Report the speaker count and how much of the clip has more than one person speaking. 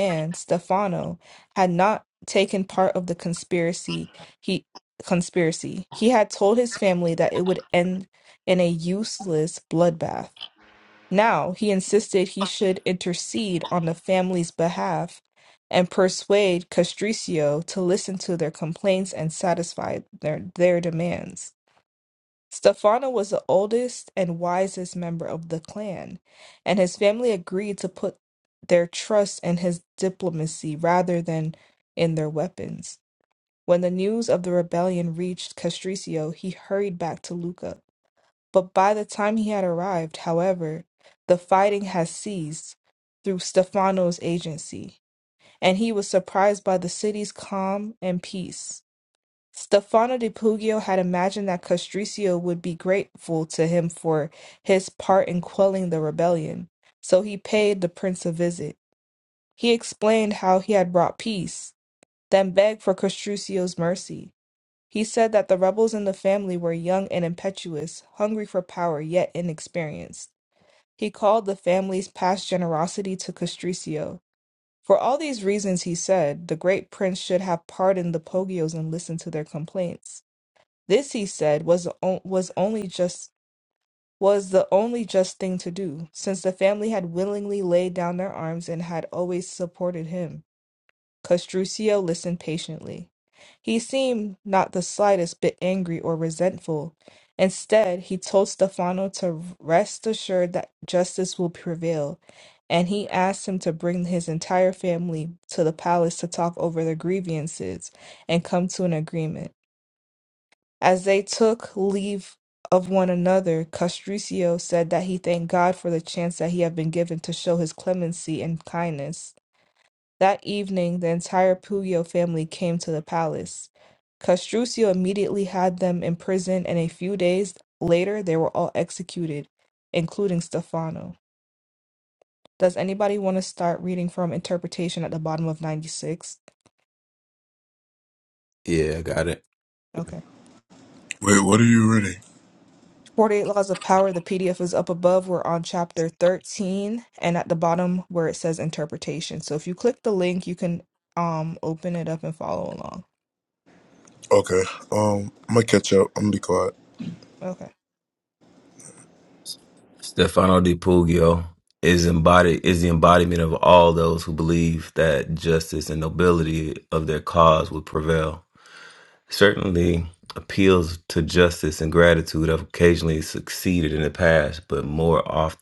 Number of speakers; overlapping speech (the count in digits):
3, no overlap